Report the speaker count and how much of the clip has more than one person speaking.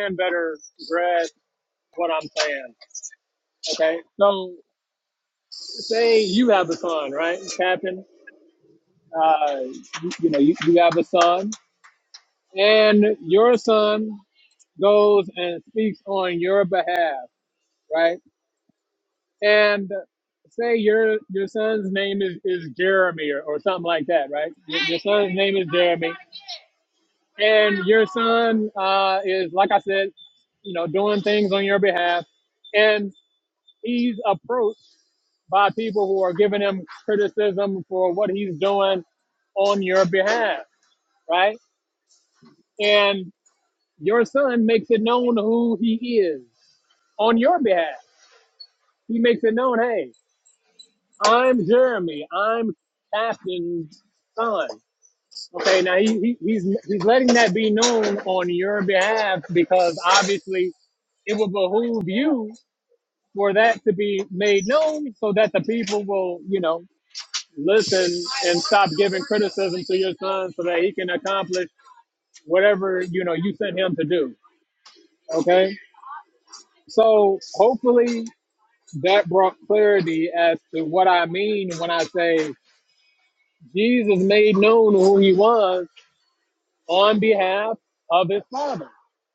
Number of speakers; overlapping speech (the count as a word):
one, no overlap